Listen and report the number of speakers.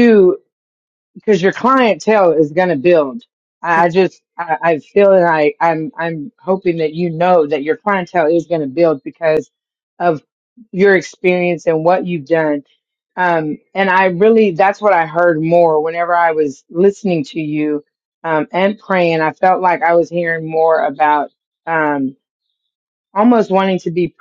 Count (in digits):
1